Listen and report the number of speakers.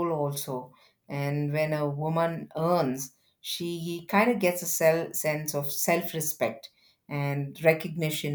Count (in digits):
1